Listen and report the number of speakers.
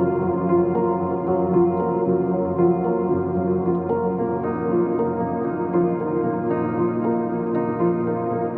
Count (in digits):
0